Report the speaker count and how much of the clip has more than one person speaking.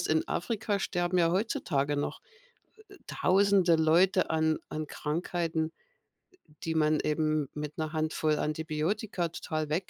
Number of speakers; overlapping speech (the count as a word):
one, no overlap